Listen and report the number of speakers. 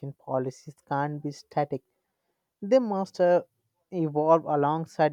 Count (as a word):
one